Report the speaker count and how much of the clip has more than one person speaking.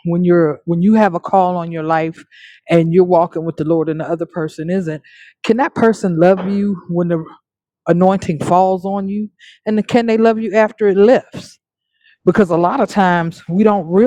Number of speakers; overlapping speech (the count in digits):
1, no overlap